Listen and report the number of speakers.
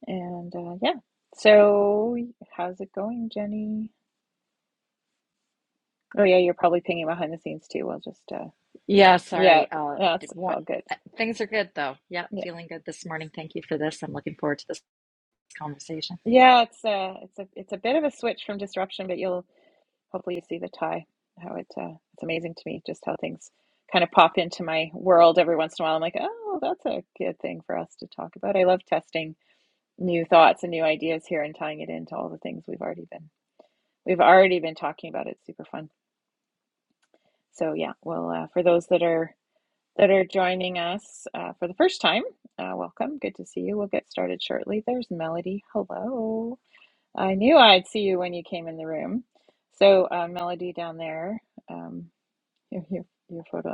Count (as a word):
two